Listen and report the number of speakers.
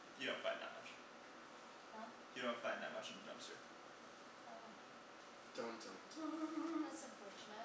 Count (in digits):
3